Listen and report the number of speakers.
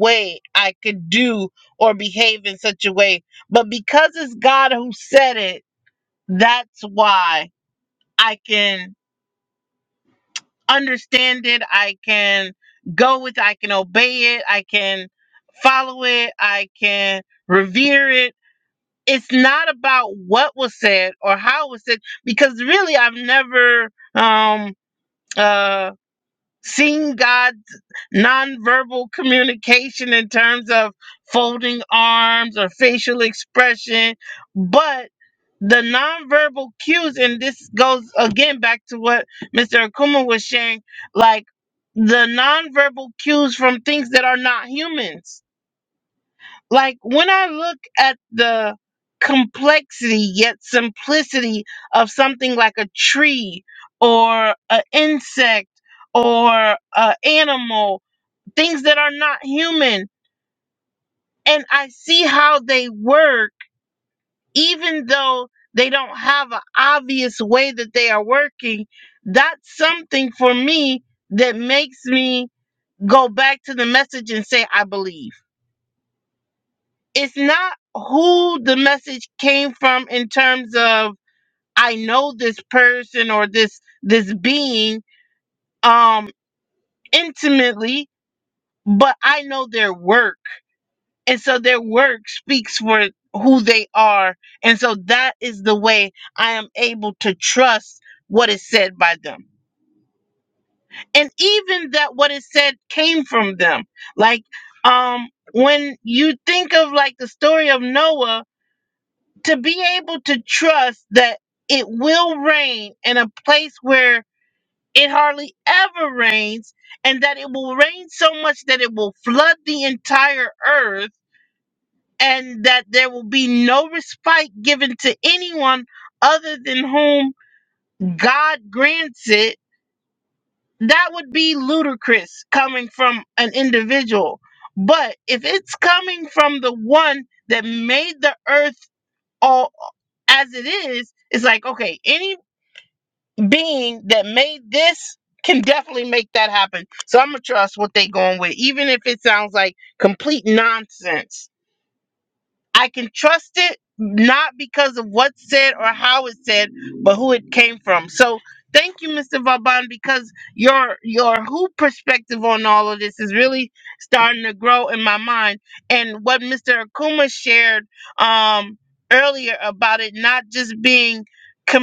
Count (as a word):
one